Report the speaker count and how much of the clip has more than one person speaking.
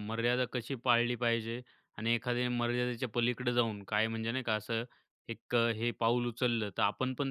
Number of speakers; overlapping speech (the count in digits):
1, no overlap